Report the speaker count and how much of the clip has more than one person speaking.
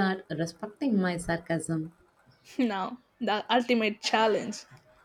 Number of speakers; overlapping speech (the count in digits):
2, no overlap